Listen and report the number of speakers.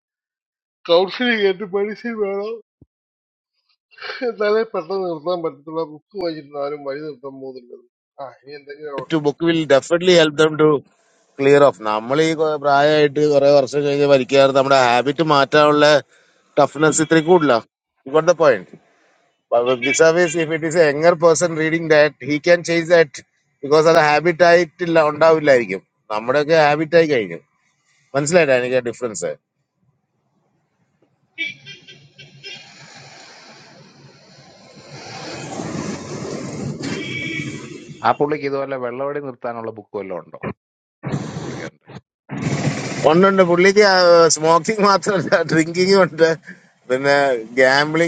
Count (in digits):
3